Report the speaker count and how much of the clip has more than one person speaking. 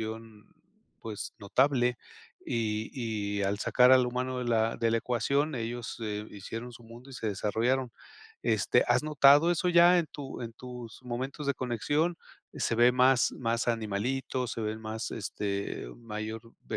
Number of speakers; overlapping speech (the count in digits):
1, no overlap